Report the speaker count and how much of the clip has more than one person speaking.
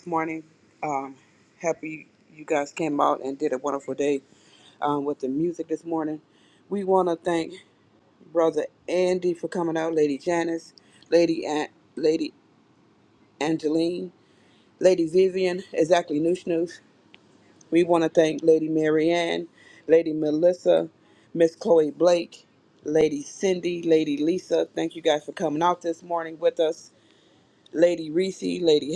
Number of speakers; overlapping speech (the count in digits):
1, no overlap